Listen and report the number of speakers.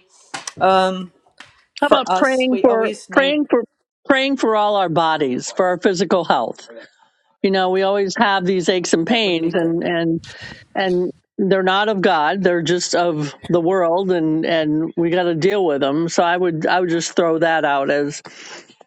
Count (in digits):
2